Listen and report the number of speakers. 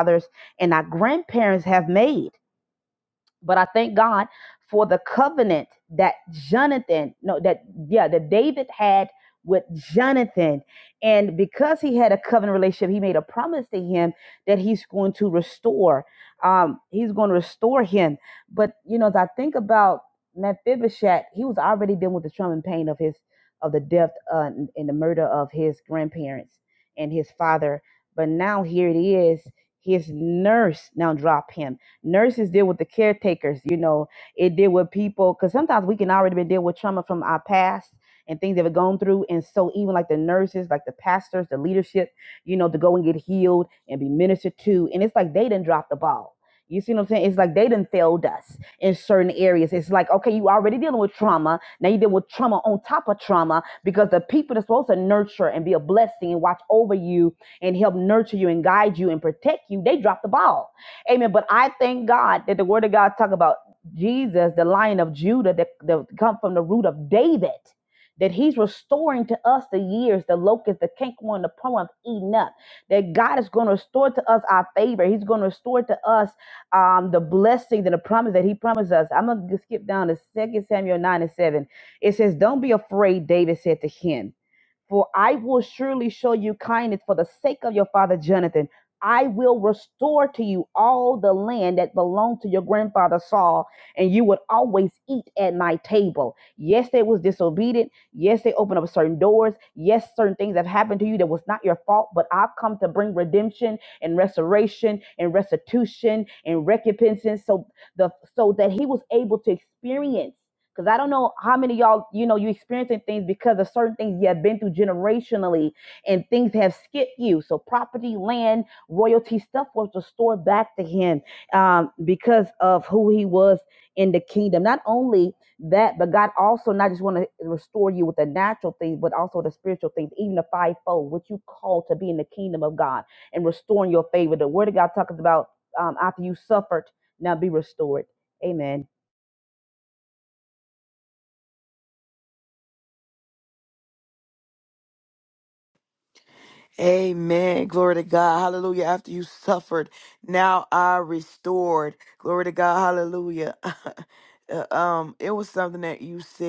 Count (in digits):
2